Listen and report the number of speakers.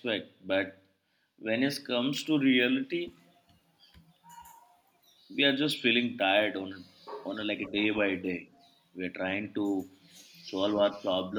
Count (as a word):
one